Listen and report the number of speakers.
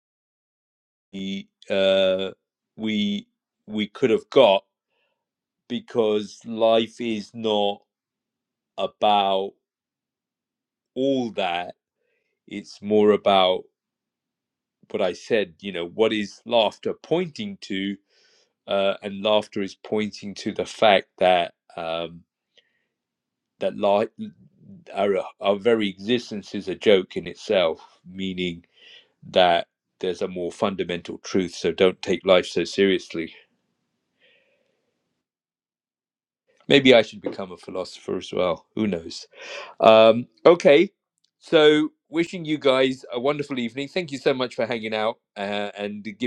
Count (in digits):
1